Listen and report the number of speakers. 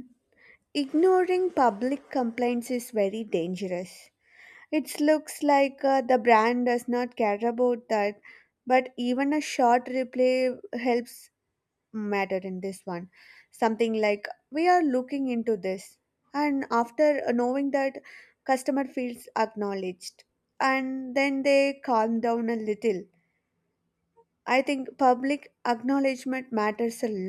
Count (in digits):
1